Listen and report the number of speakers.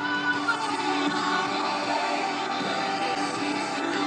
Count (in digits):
0